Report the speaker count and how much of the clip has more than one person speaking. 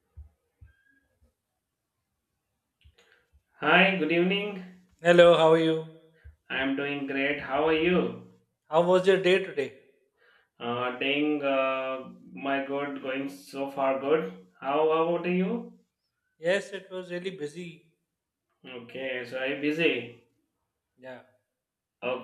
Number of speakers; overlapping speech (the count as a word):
two, no overlap